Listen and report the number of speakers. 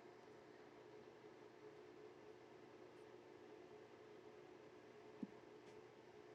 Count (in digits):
0